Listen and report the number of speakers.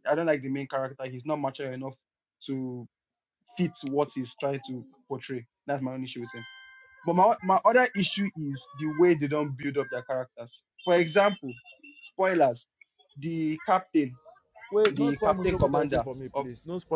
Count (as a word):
two